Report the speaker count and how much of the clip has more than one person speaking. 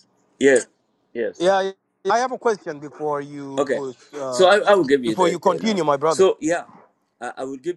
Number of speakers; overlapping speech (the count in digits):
2, about 16%